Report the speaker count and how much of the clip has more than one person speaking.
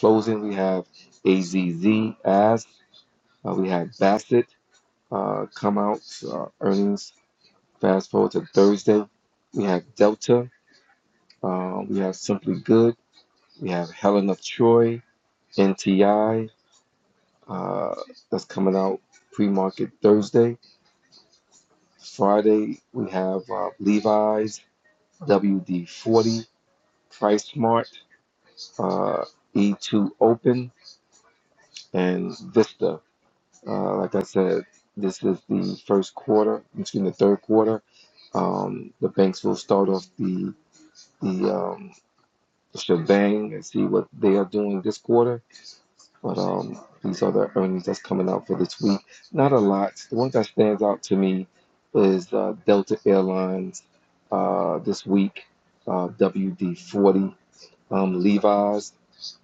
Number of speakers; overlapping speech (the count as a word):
one, no overlap